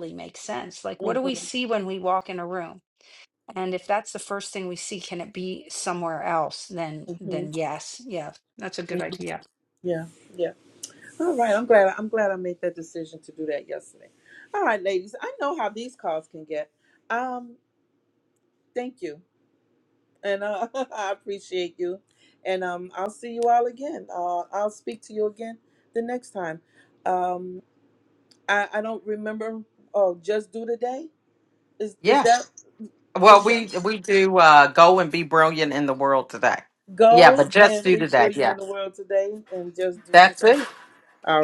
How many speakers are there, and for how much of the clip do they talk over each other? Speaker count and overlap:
3, about 8%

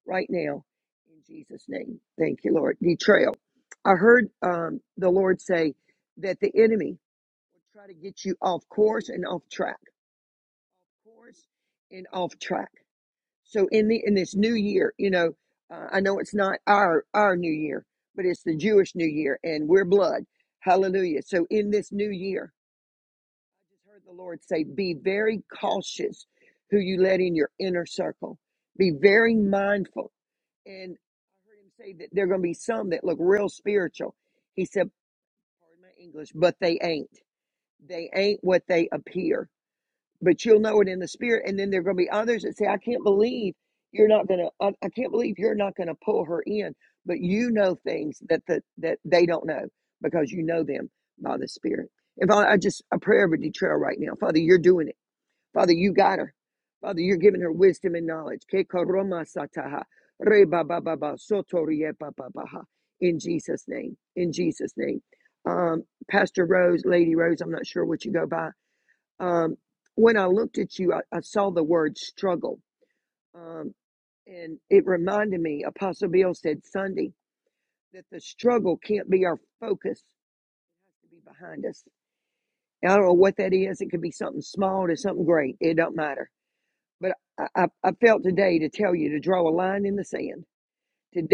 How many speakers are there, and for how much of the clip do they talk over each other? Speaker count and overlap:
1, no overlap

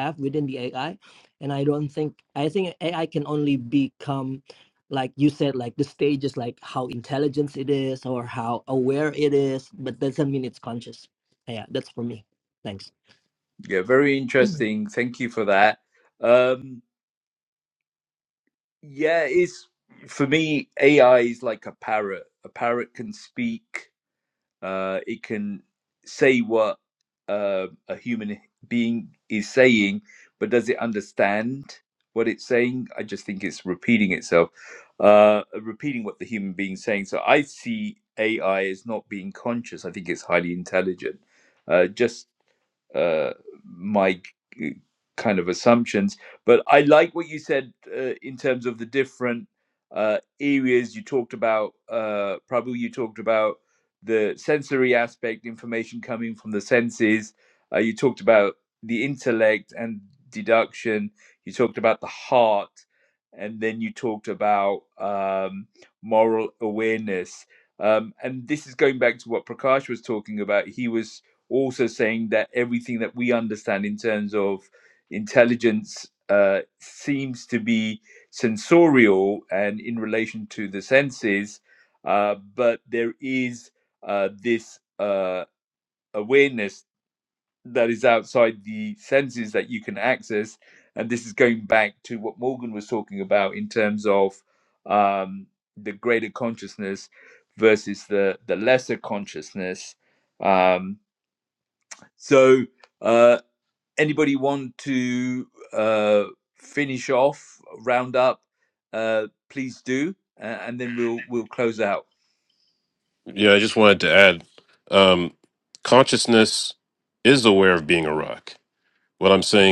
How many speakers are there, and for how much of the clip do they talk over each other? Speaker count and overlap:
3, no overlap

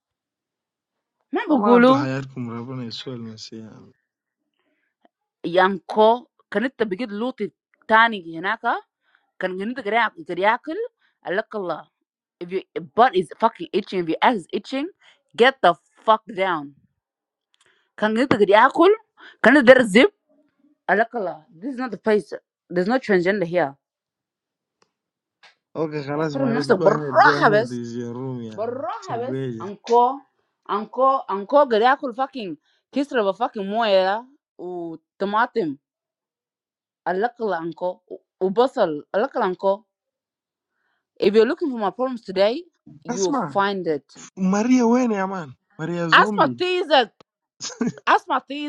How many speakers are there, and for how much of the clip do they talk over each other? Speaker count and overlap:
2, about 8%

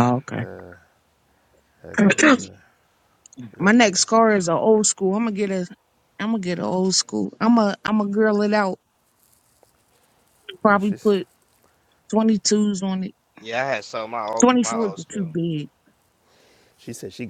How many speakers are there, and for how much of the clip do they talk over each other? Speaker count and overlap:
3, about 12%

